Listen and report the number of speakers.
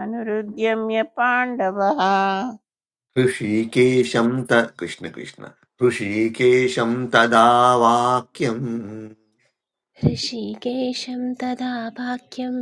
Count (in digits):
3